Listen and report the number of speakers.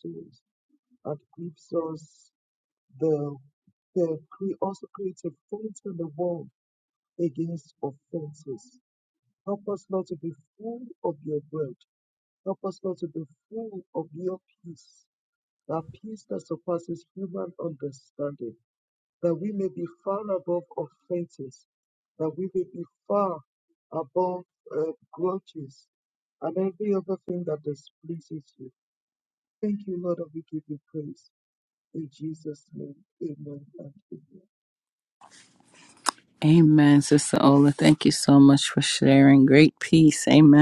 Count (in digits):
2